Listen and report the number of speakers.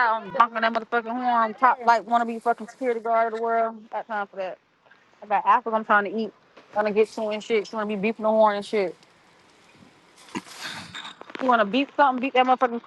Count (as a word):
one